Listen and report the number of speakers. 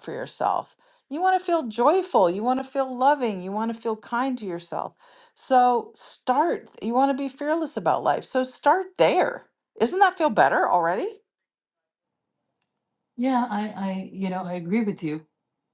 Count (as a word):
two